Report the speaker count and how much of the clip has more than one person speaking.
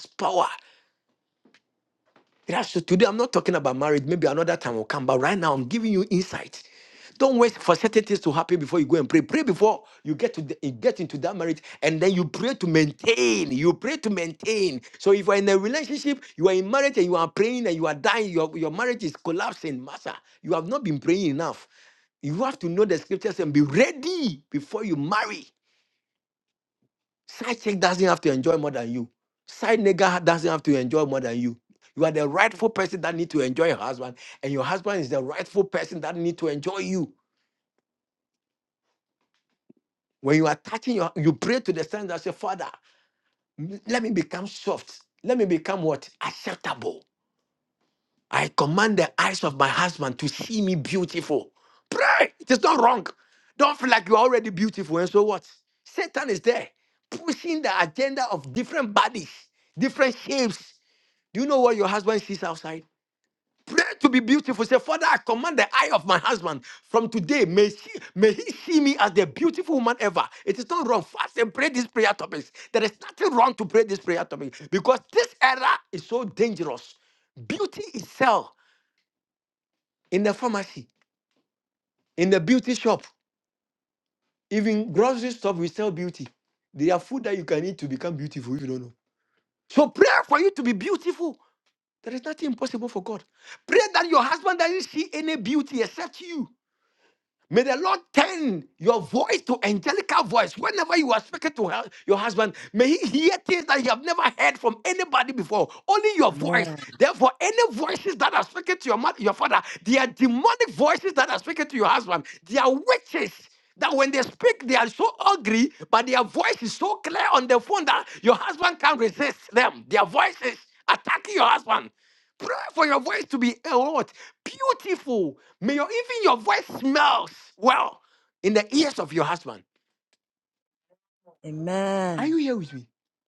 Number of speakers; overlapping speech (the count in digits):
2, under 1%